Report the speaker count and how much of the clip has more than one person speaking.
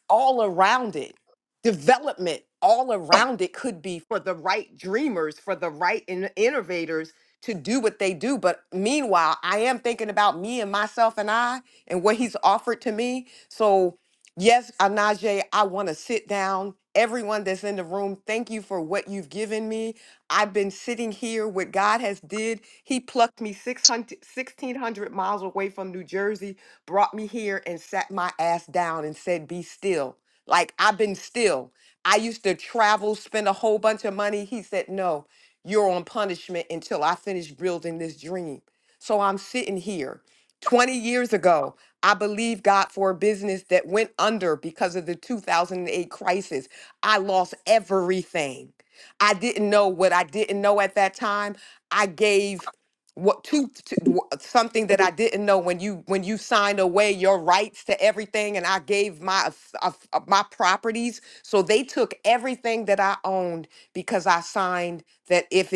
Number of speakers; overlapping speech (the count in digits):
1, no overlap